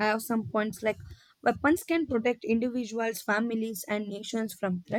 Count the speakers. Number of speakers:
one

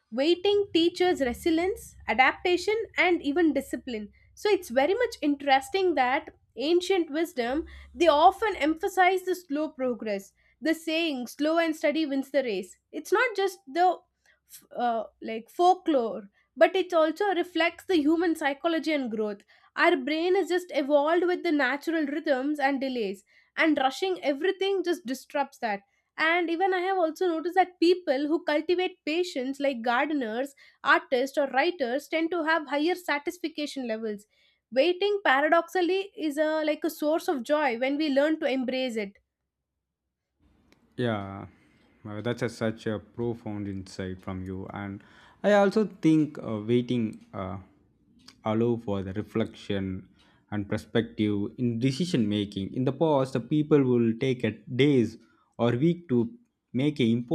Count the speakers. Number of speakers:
two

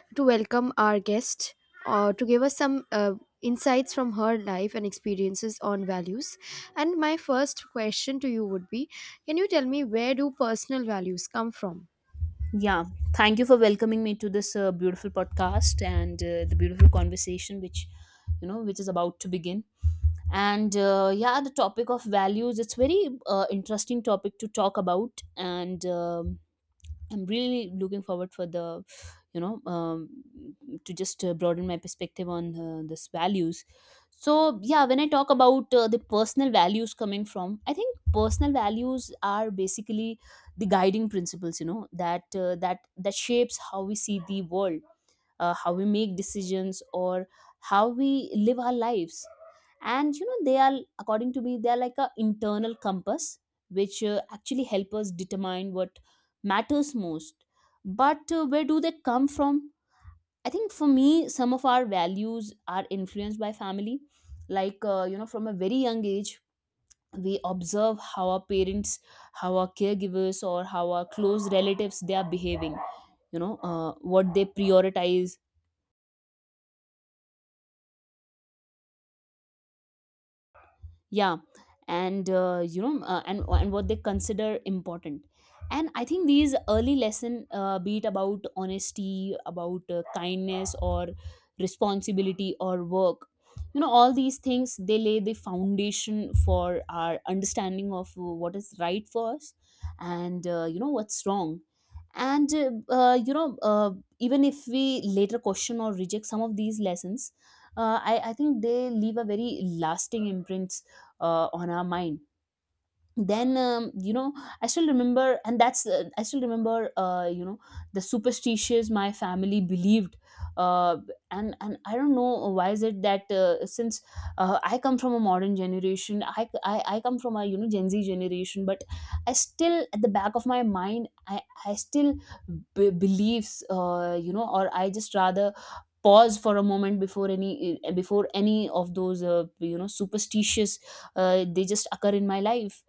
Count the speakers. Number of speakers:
two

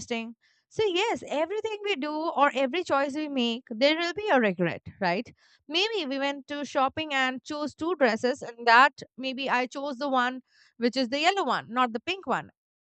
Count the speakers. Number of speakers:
one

